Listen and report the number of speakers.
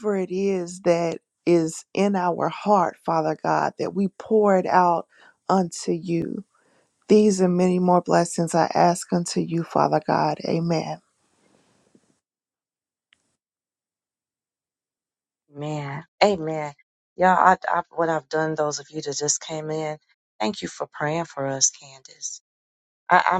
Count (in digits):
2